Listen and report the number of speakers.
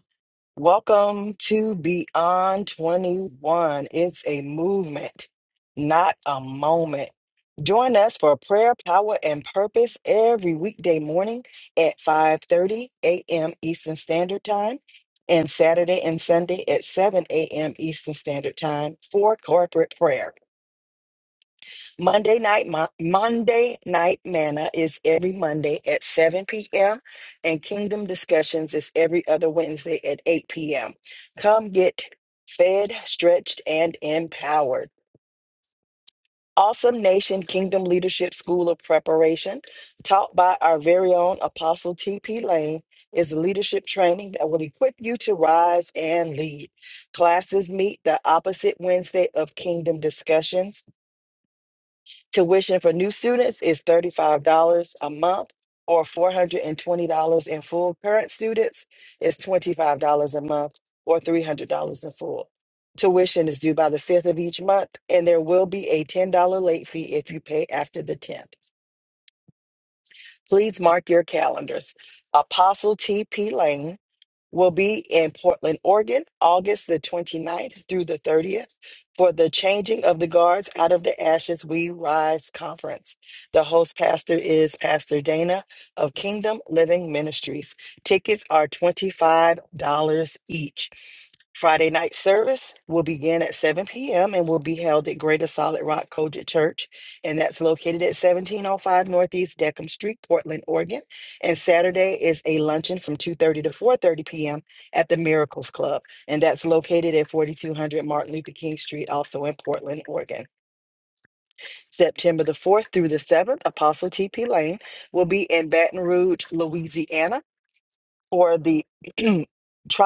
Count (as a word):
one